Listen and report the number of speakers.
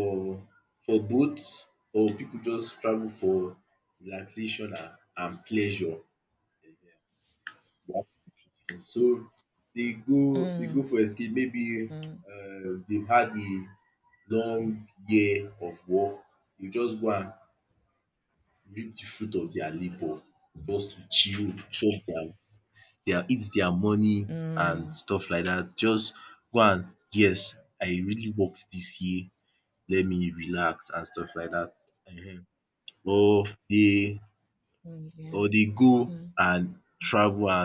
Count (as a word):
two